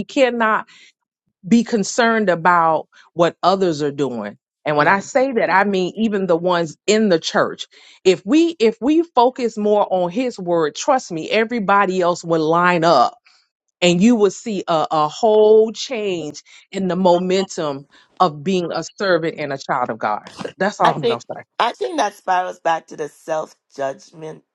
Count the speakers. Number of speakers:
2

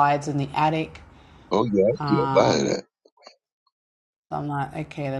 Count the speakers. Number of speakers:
2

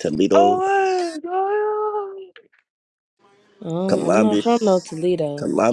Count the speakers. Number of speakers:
3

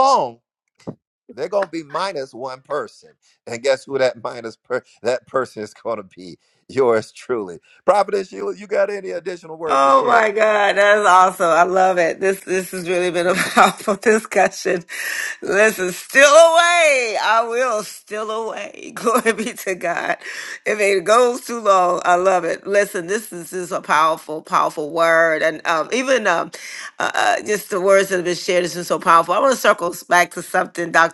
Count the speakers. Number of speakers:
2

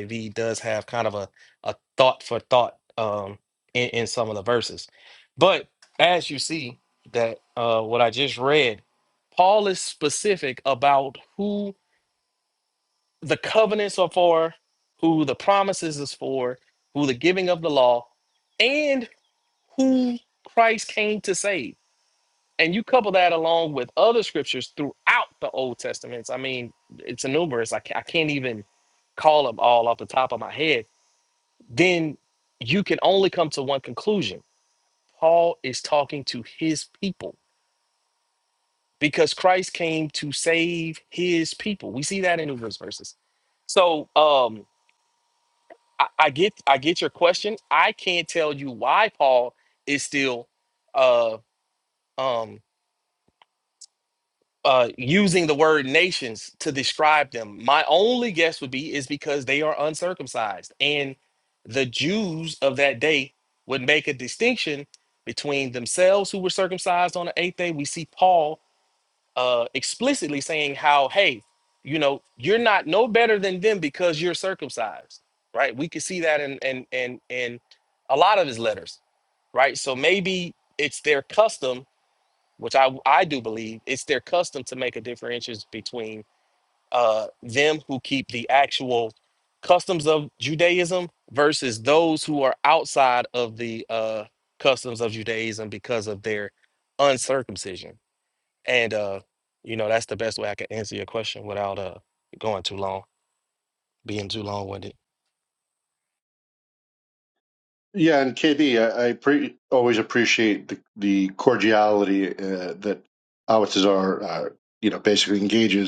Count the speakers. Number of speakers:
2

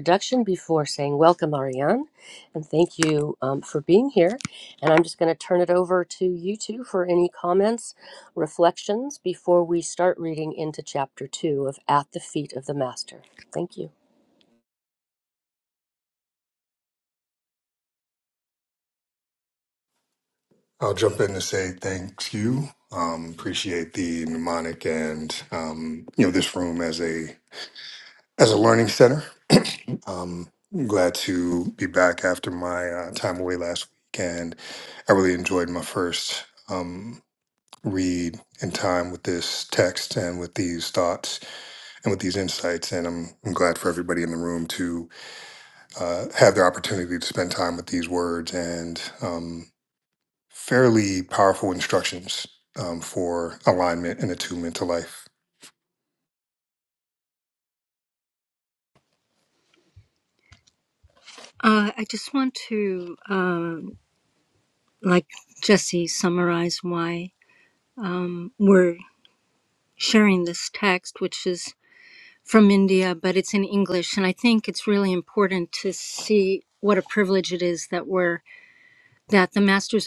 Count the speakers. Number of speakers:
3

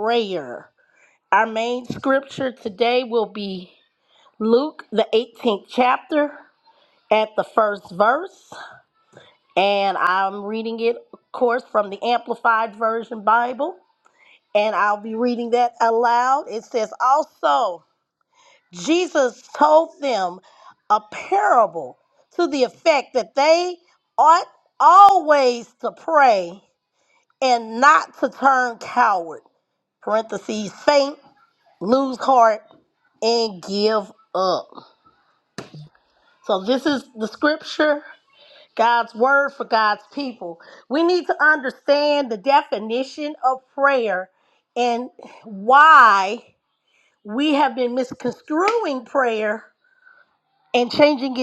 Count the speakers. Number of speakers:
1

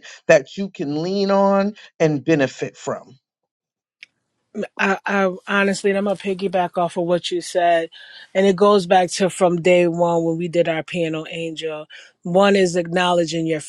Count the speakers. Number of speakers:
2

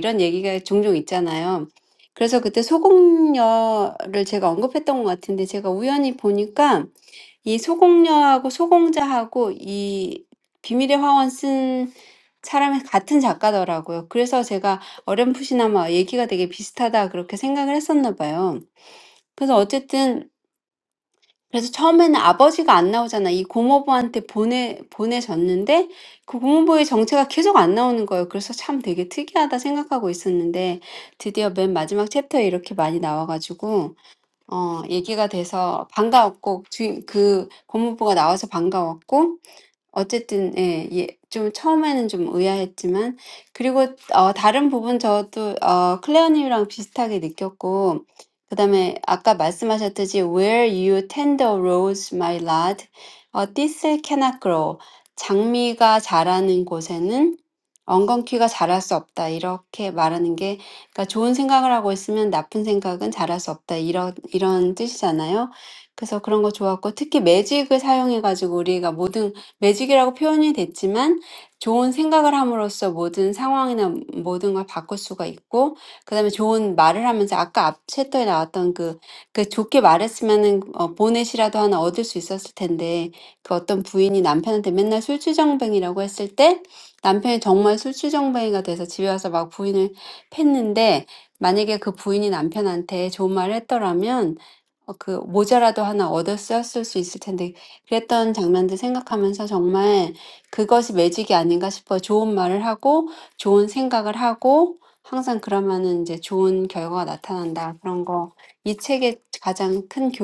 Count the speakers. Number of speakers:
1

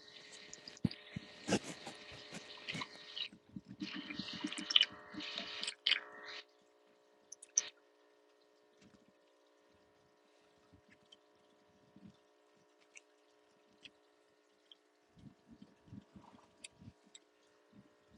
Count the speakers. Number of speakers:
0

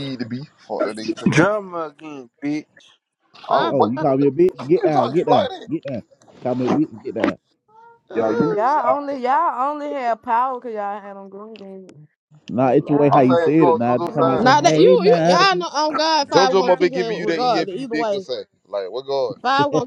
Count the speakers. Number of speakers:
5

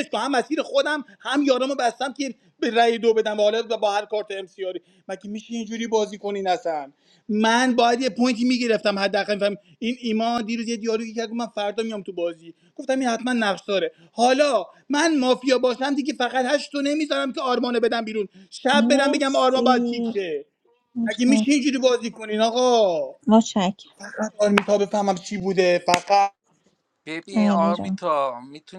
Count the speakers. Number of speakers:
3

